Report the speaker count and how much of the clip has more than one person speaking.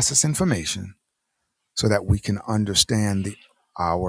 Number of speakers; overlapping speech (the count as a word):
one, no overlap